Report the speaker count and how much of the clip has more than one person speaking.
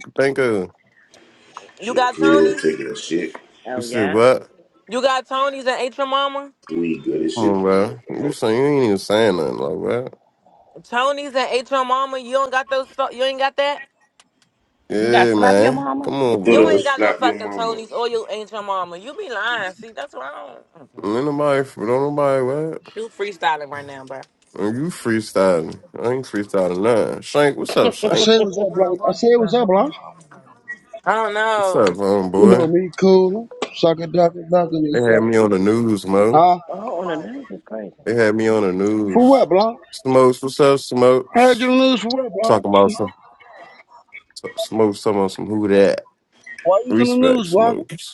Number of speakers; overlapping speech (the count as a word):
five, about 16%